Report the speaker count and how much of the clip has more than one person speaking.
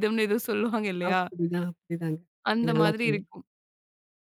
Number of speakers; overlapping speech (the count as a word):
two, about 17%